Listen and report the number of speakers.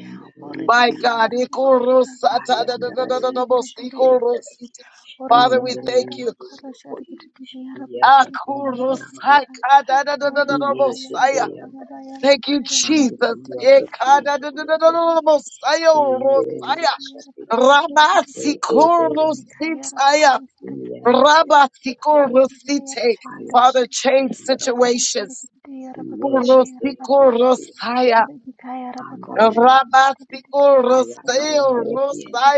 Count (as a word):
three